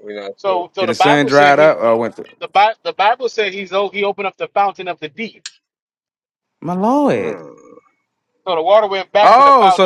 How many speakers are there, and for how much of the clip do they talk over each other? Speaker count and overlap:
3, about 21%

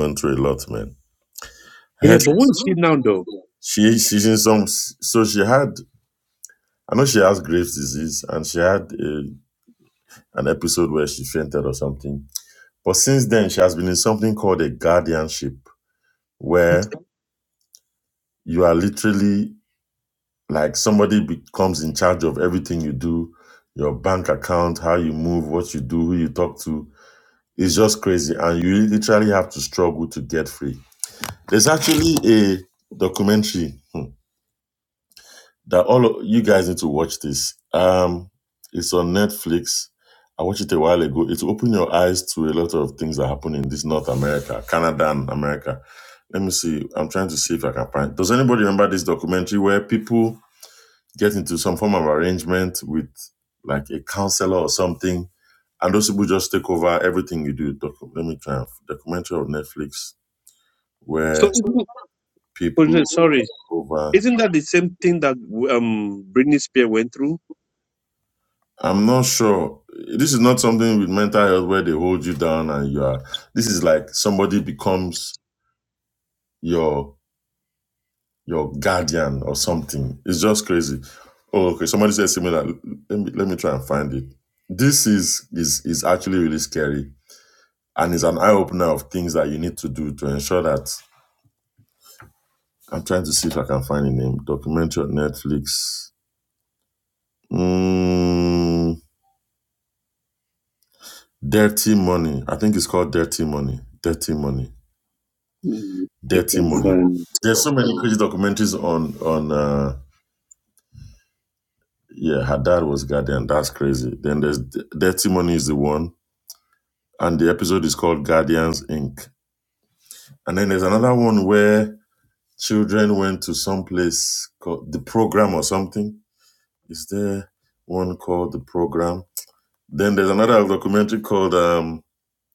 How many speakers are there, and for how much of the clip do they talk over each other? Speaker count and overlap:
2, about 1%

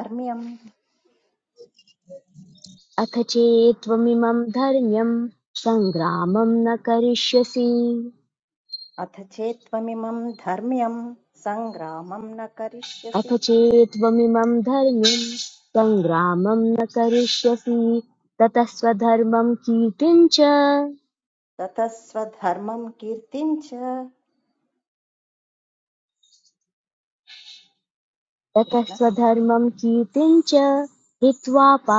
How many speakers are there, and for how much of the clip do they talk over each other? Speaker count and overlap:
2, about 2%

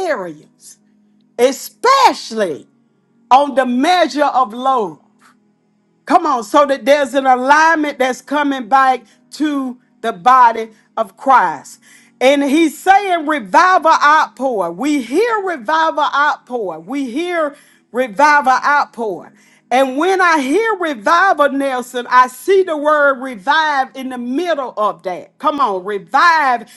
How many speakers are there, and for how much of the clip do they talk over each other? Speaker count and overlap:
1, no overlap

